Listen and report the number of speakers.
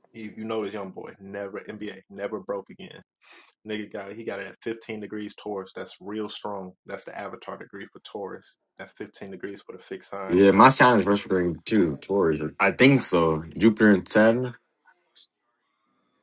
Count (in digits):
2